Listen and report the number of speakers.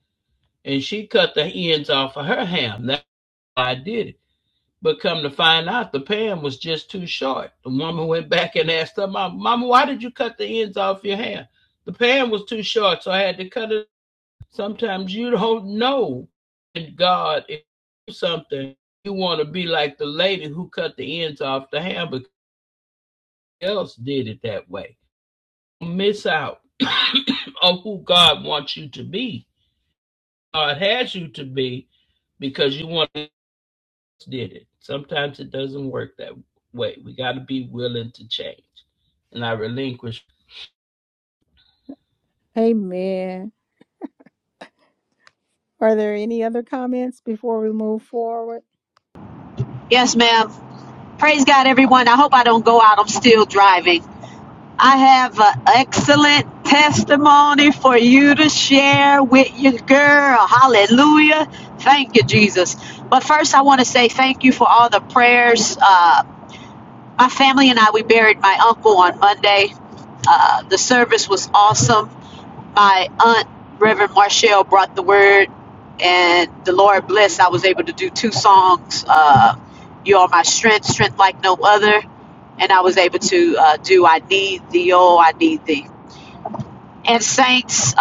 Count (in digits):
3